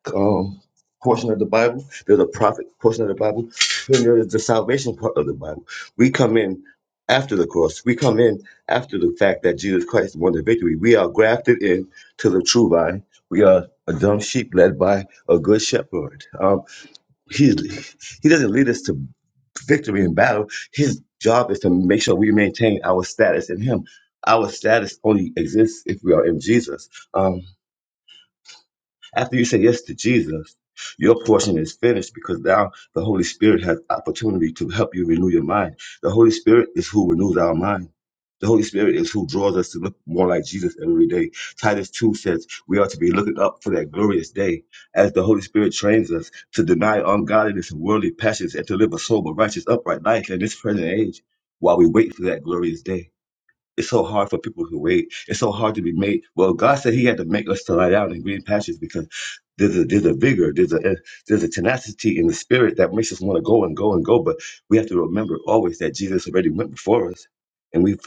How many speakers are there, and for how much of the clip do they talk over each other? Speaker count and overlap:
1, no overlap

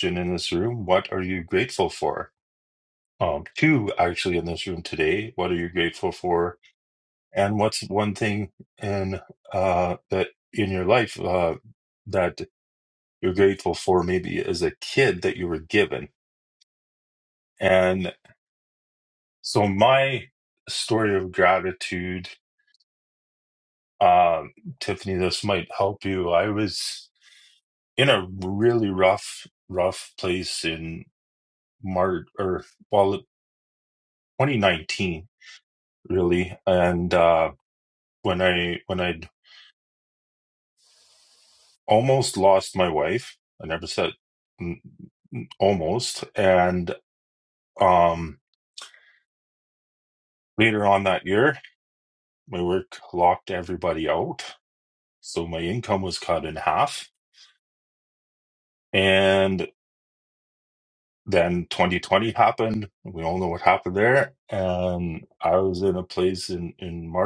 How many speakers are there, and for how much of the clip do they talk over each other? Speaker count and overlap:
1, no overlap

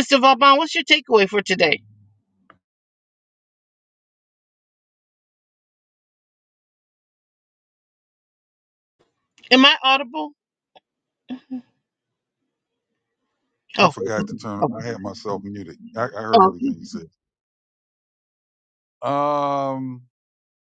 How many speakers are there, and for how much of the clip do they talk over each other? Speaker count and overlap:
2, about 2%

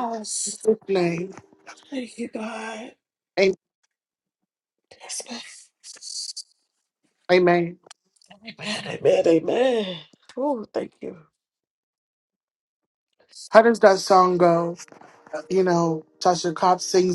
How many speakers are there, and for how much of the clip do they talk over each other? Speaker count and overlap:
2, no overlap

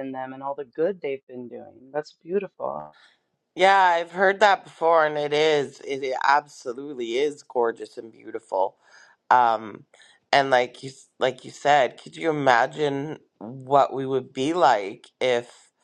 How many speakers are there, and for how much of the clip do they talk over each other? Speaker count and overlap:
2, no overlap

